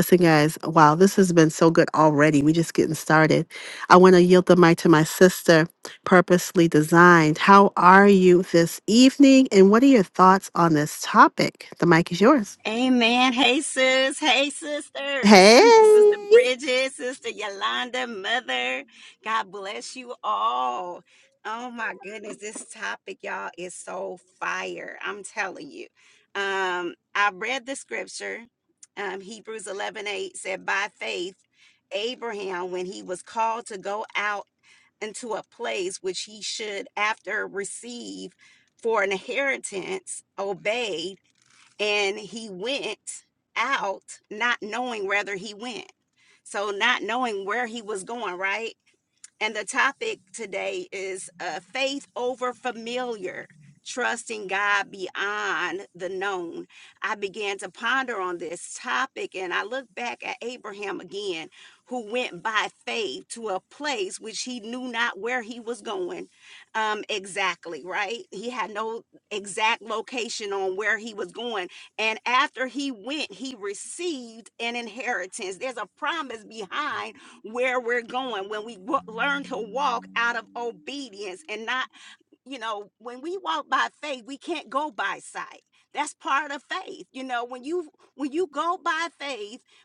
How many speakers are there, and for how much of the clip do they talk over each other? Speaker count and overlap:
2, under 1%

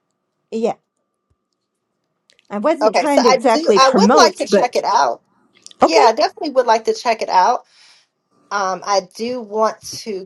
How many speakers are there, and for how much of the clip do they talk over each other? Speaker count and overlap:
2, about 21%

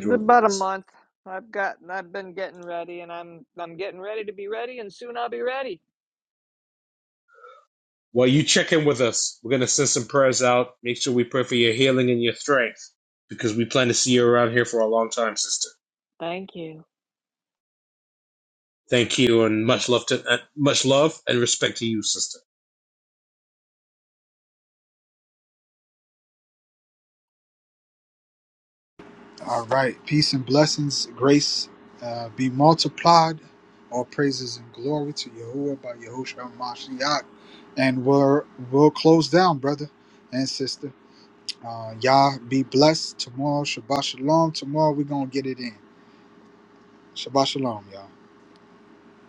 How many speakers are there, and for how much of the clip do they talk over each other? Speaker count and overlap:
3, about 1%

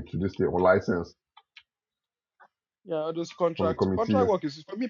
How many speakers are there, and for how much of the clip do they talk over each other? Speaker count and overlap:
2, about 14%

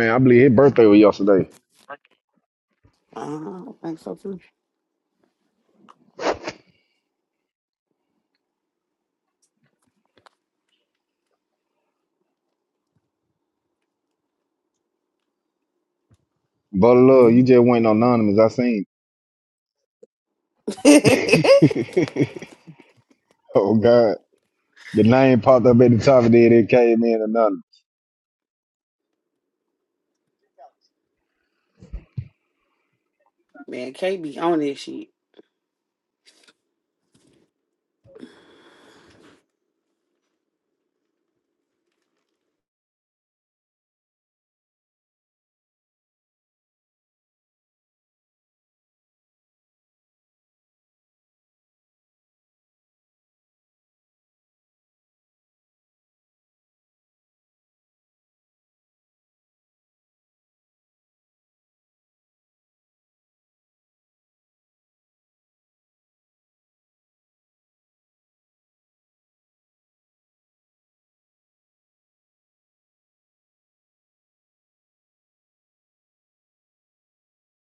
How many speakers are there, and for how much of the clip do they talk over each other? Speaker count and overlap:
2, under 1%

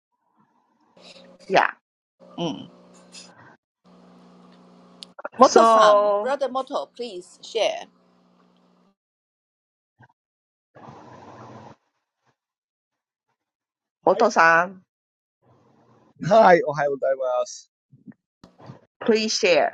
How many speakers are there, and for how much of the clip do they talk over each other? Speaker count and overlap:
3, about 6%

